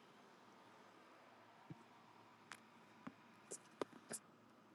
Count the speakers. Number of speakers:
0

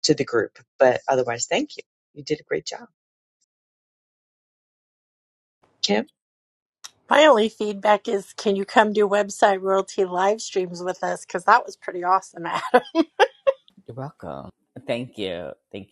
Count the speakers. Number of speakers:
3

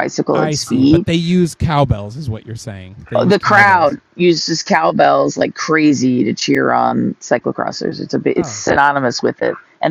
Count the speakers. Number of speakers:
2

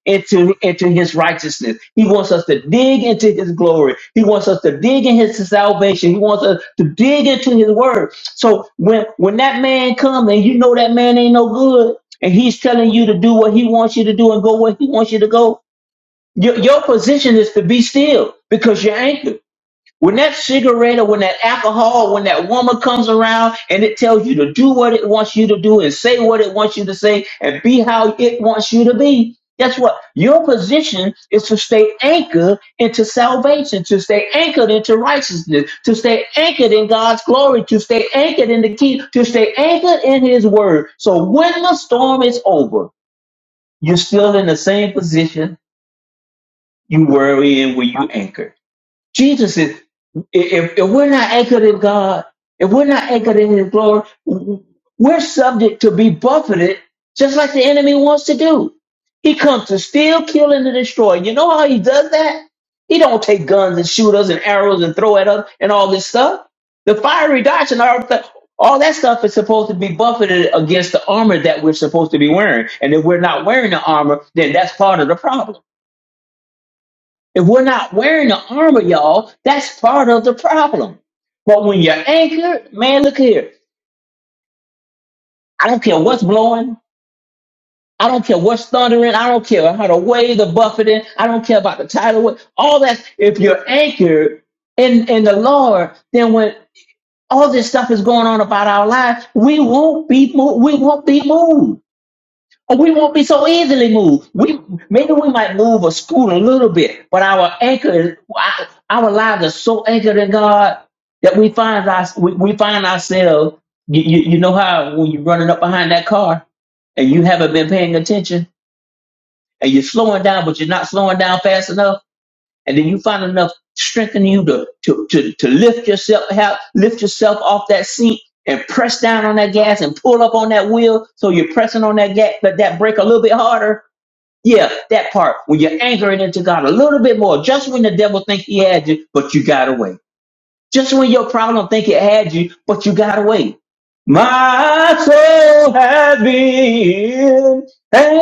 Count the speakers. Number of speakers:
1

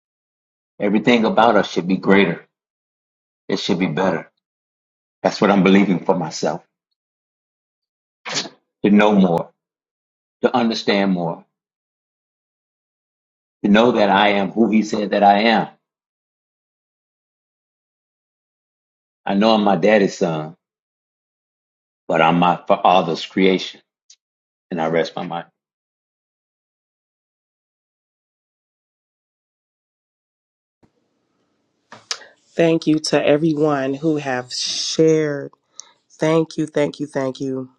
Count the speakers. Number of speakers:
2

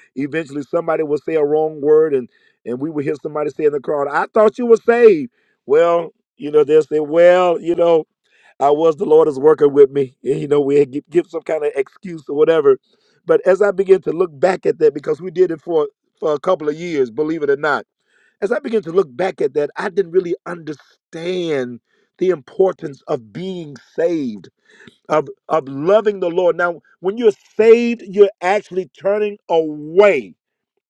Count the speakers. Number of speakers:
1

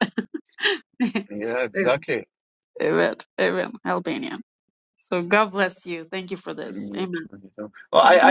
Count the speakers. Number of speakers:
2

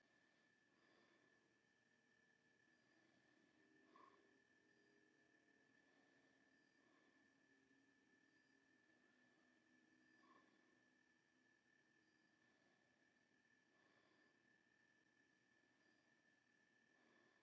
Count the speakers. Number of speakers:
0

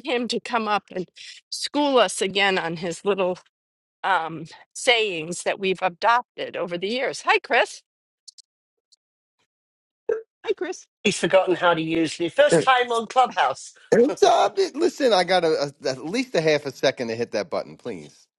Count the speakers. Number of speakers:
3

